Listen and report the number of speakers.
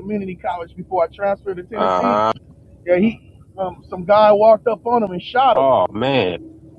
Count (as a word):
two